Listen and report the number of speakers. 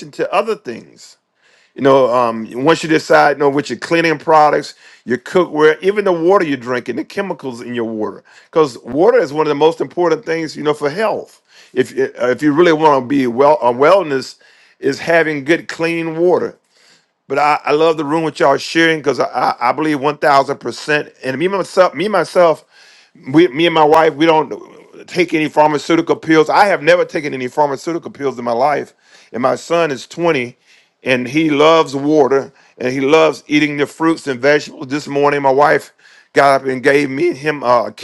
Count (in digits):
1